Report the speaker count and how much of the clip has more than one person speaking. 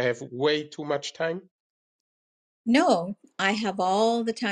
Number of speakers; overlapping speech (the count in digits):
2, no overlap